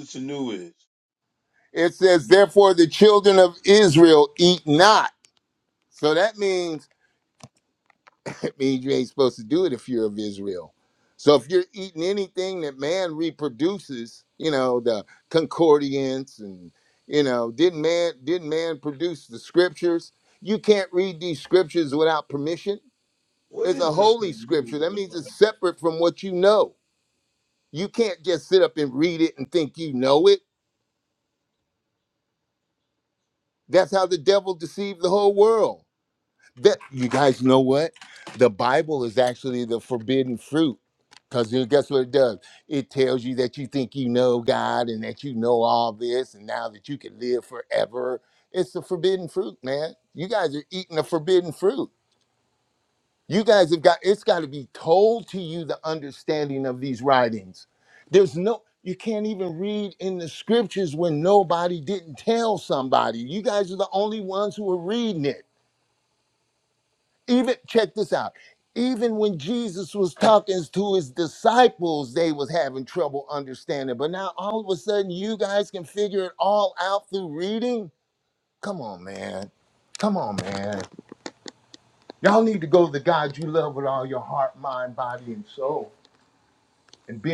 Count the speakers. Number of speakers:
two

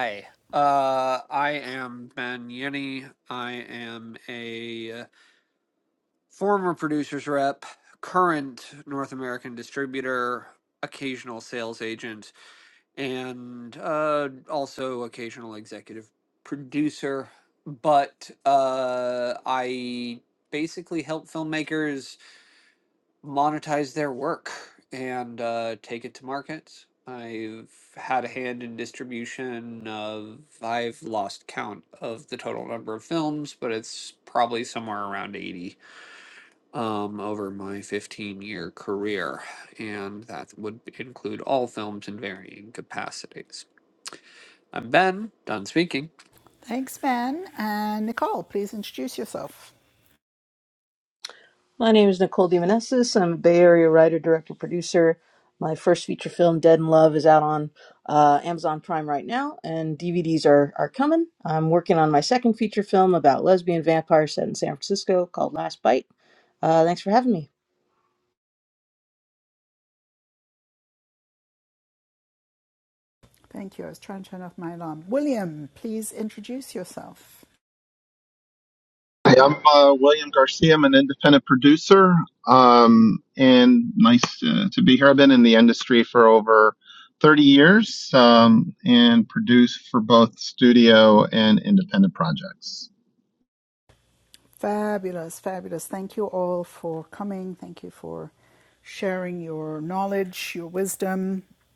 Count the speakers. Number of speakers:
four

